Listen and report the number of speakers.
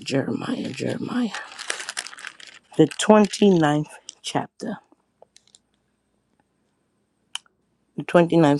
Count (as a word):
one